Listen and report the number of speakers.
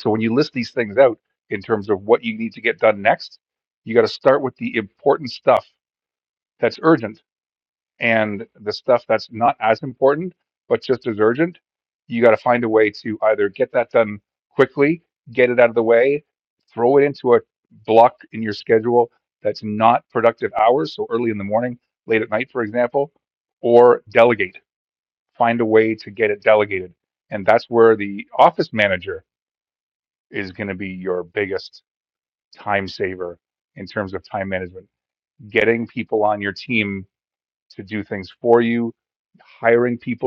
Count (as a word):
one